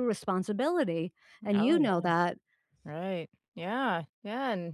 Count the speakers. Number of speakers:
two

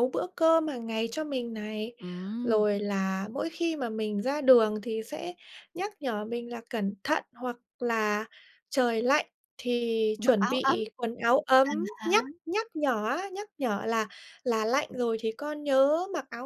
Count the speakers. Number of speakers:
two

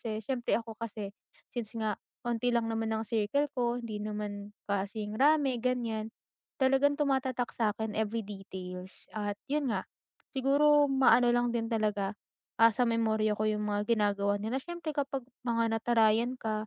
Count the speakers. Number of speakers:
one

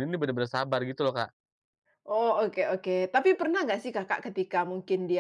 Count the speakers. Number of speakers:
two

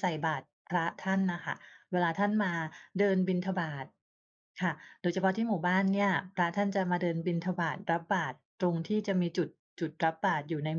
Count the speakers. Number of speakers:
one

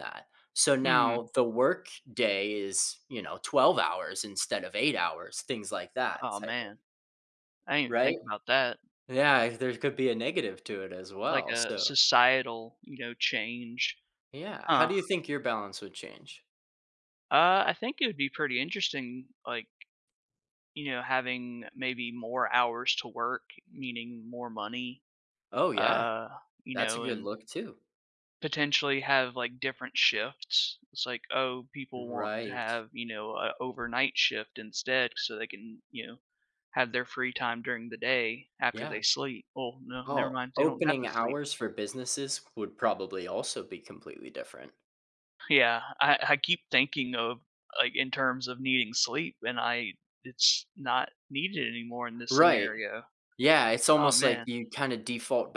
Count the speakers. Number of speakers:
two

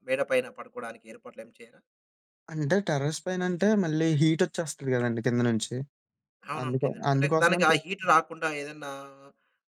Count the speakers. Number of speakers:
two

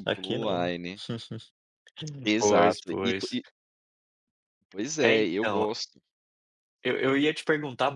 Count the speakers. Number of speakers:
two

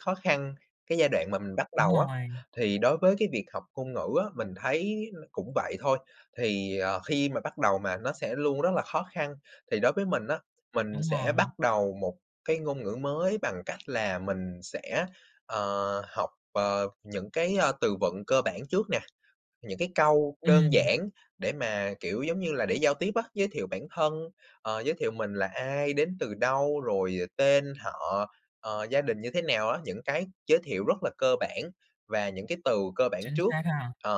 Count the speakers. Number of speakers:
two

